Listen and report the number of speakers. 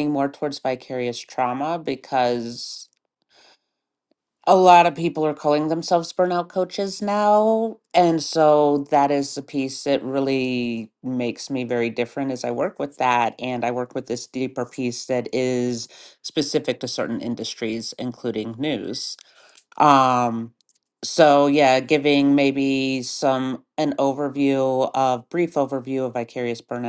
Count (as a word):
one